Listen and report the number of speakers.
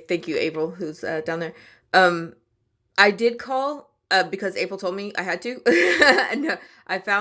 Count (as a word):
one